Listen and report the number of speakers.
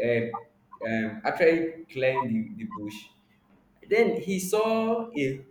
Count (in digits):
1